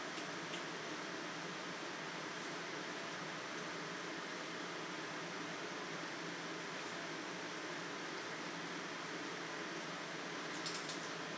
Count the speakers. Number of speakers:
zero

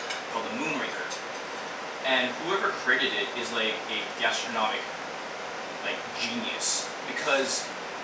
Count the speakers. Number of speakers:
one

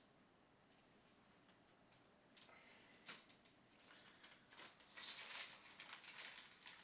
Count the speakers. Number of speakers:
zero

